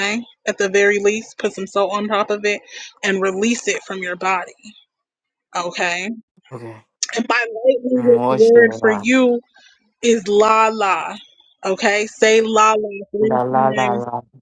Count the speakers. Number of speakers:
two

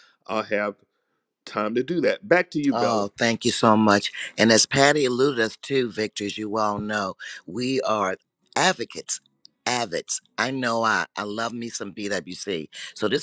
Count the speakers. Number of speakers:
two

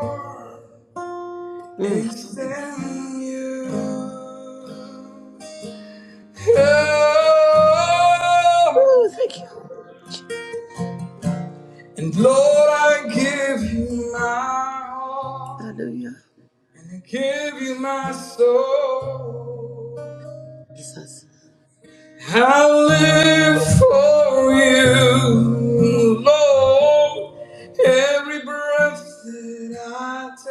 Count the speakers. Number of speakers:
two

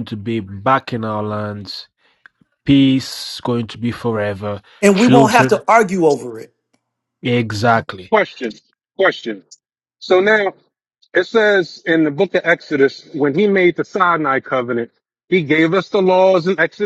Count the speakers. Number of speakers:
three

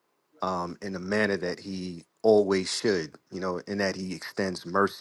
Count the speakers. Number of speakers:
one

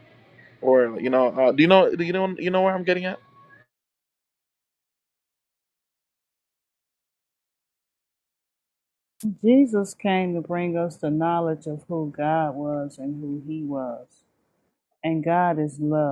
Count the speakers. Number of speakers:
two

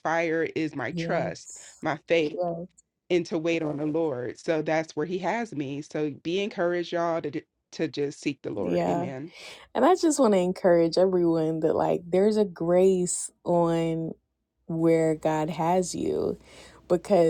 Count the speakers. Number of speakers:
two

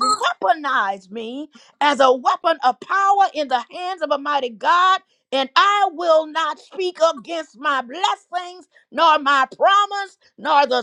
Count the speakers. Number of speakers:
one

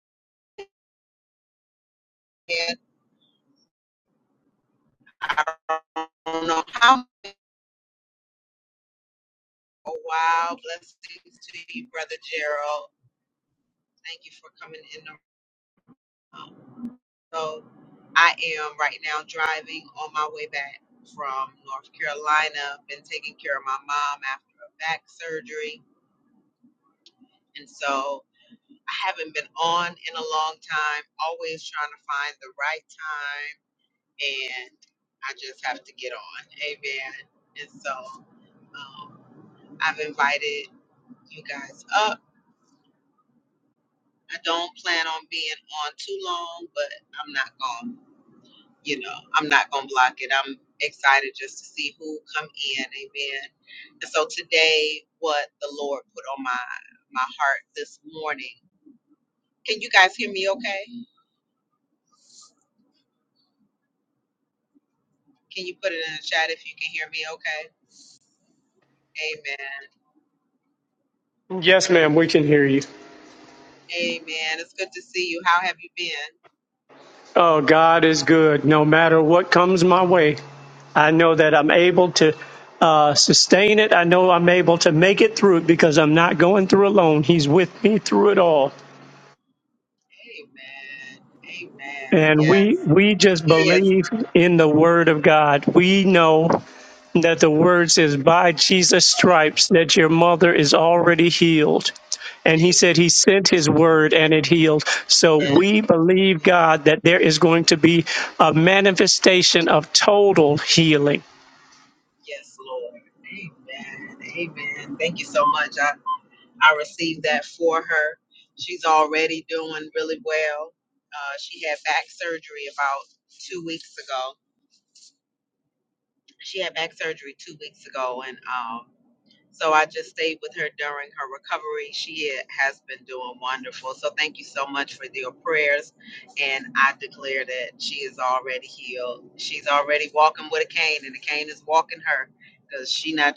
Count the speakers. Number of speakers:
two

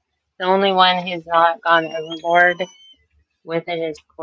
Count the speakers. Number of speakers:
one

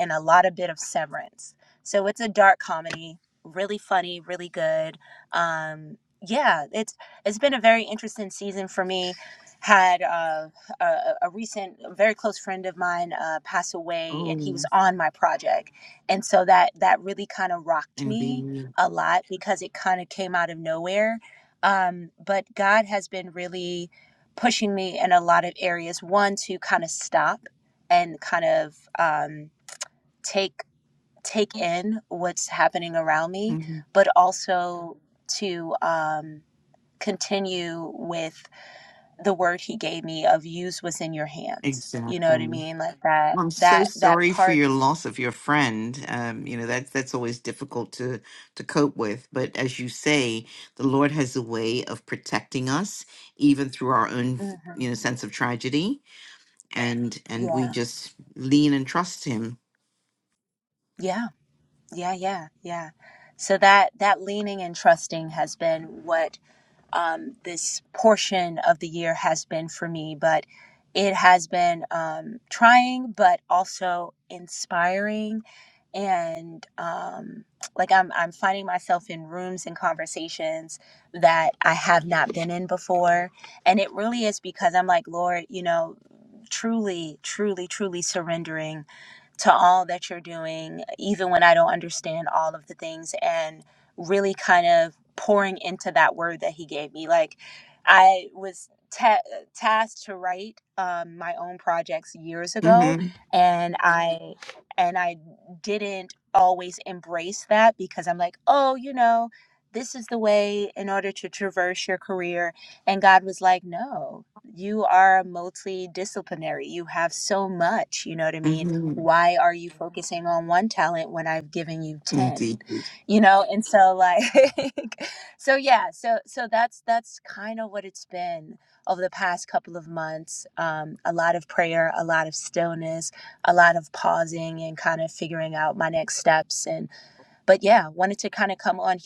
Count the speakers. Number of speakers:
two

